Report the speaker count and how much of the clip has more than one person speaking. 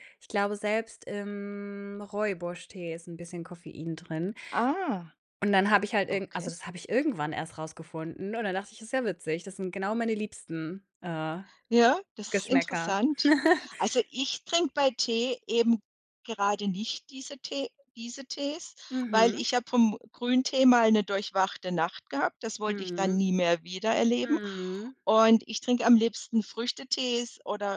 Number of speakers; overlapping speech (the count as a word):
two, about 7%